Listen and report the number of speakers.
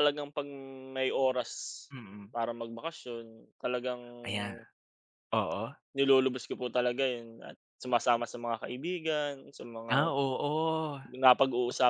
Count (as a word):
two